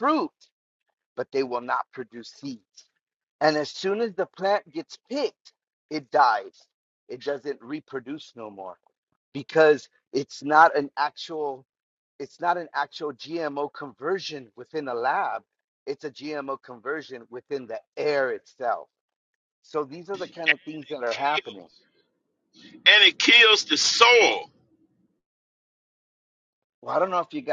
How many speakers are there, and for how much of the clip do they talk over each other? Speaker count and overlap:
2, about 2%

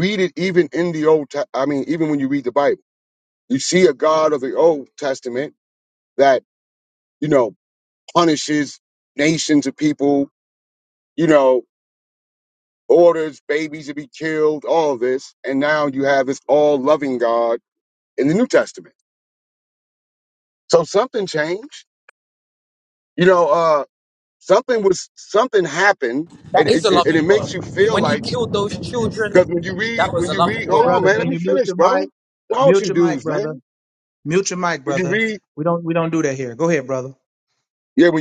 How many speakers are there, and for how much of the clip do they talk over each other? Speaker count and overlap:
3, about 15%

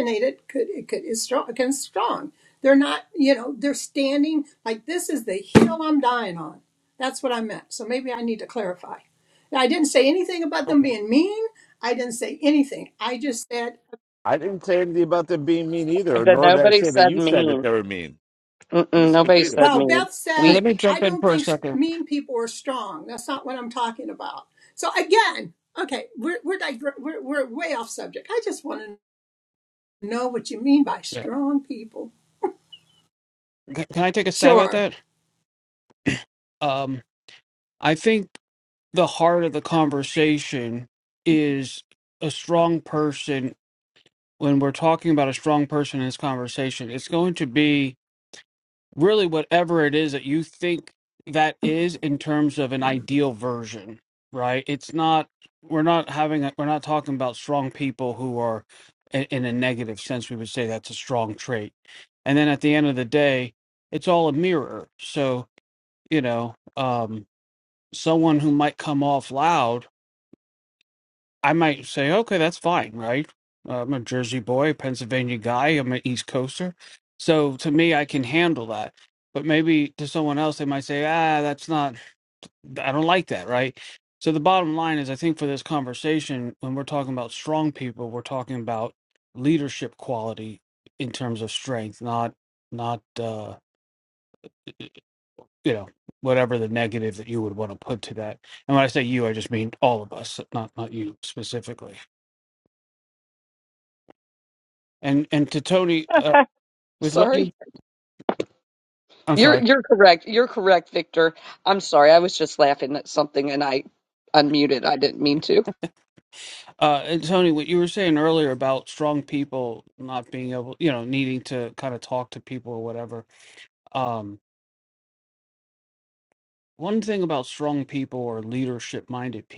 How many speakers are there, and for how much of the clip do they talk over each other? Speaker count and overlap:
4, about 4%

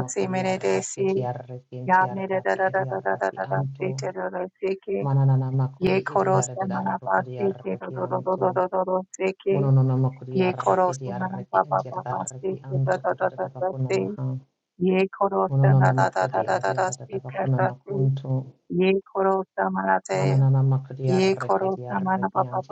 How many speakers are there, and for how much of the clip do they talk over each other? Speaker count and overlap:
2, about 60%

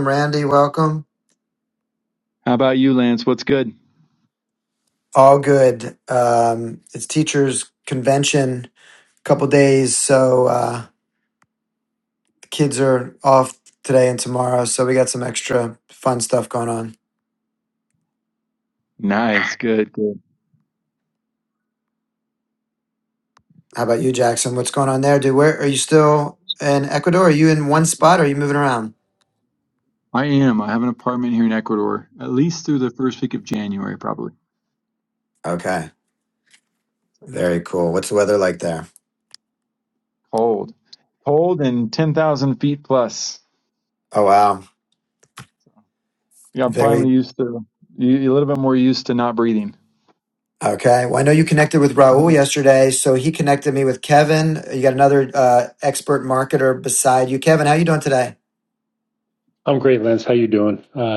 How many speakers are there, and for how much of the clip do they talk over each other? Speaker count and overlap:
3, about 1%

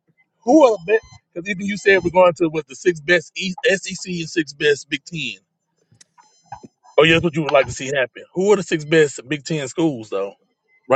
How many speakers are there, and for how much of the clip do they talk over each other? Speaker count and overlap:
1, no overlap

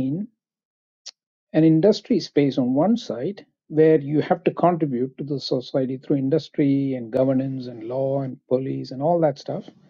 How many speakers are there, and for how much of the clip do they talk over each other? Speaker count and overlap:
1, no overlap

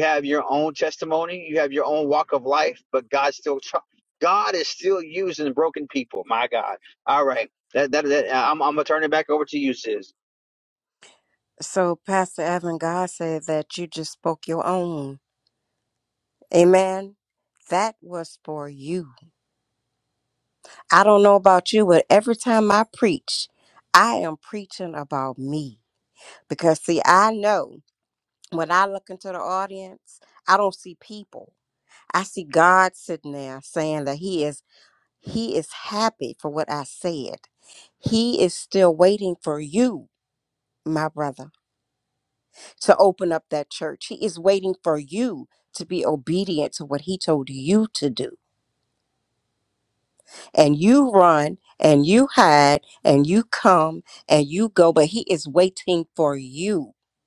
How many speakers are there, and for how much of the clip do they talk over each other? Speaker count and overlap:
2, no overlap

